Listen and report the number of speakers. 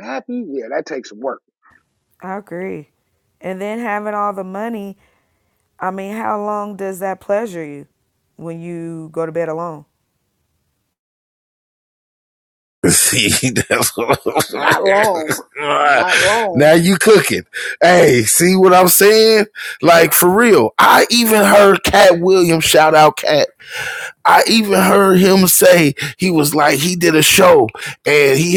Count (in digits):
3